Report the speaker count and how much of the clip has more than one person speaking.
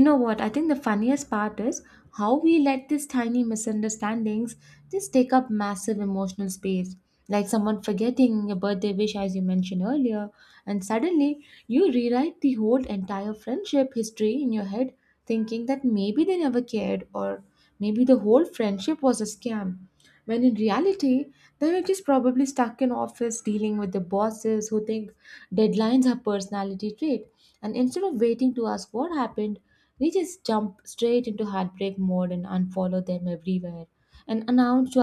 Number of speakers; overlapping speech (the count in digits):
1, no overlap